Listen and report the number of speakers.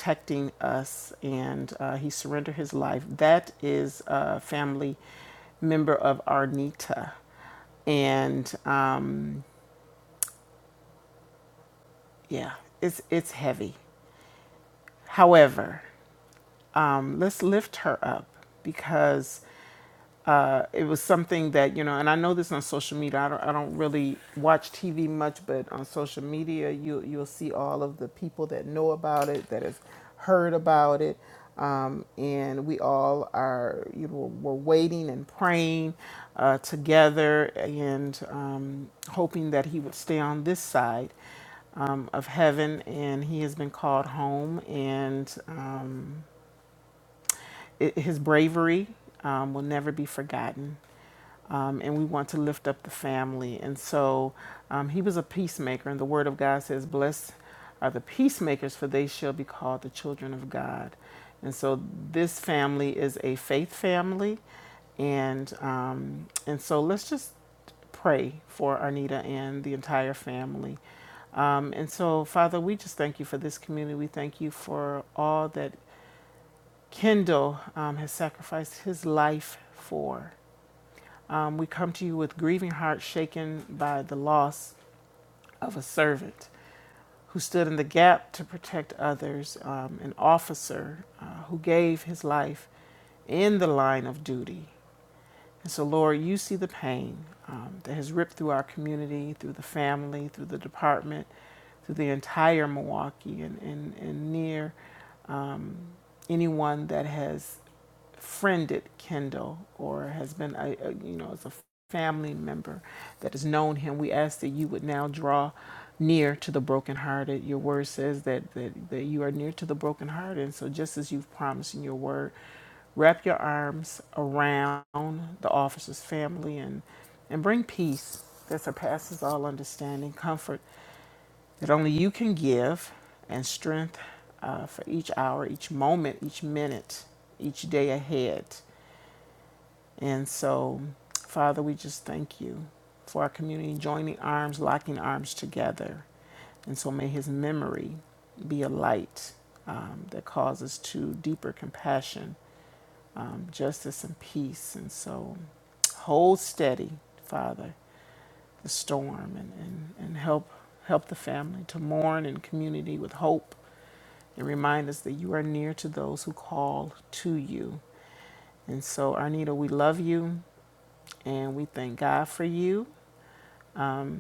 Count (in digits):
1